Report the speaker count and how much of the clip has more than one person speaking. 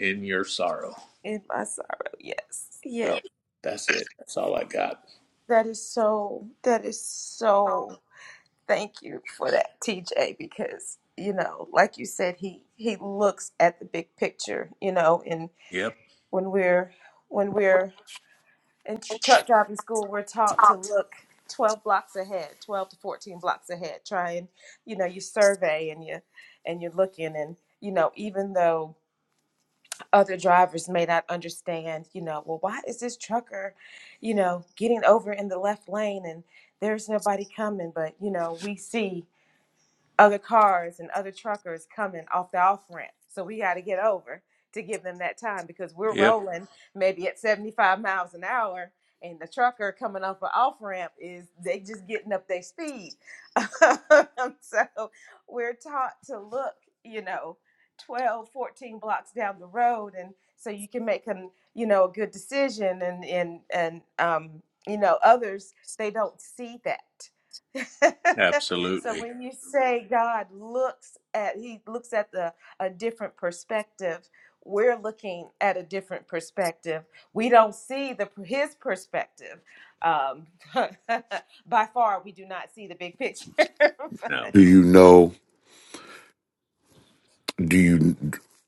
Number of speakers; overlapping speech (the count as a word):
three, about 1%